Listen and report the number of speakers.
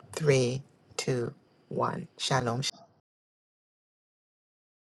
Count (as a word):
one